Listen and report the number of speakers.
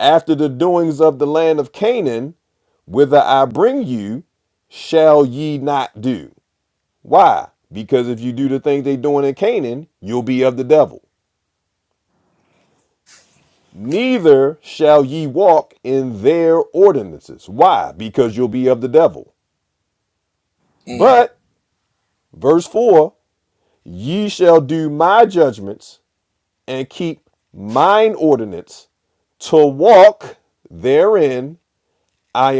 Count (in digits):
1